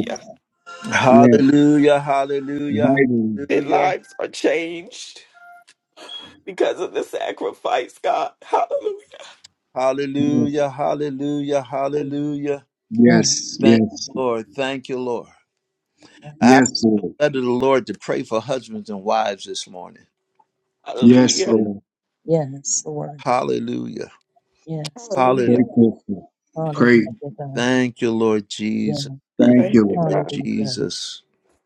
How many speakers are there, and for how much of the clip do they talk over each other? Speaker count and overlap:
4, about 15%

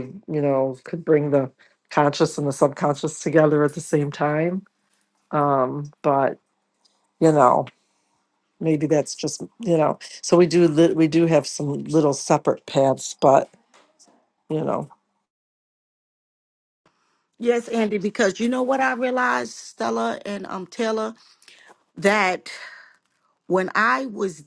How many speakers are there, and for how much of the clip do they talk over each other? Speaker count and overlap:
2, no overlap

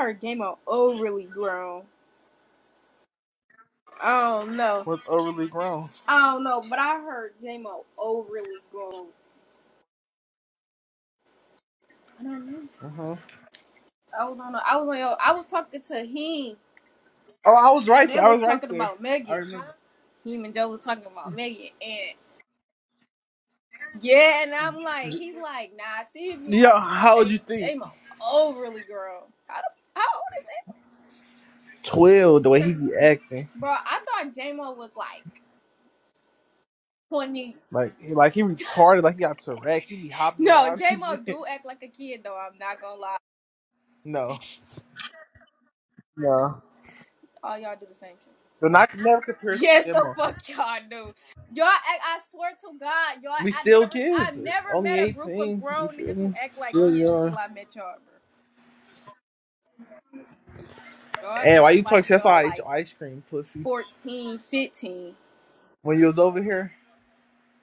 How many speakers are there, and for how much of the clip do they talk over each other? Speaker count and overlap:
2, about 13%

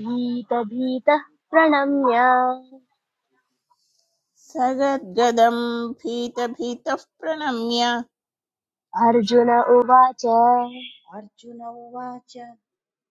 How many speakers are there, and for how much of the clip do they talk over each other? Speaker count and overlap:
3, no overlap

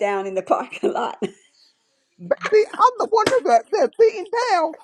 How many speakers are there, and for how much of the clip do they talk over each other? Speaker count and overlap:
2, no overlap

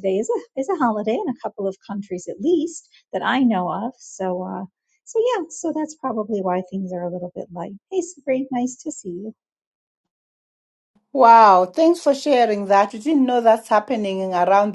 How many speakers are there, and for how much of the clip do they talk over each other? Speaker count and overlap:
2, no overlap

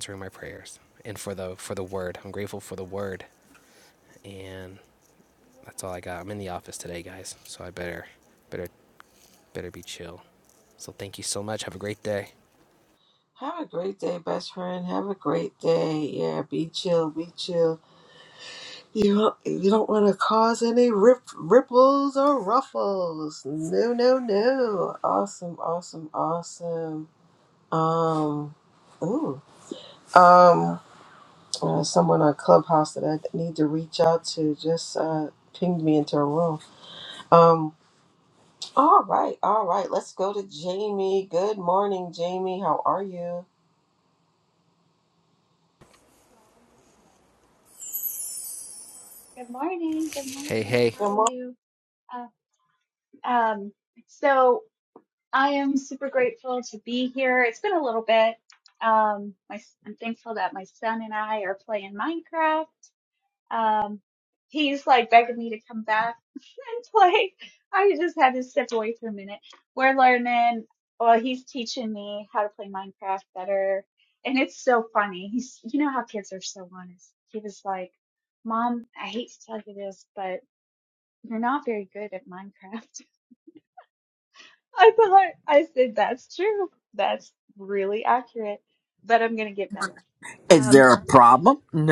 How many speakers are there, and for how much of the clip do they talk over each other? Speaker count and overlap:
4, about 1%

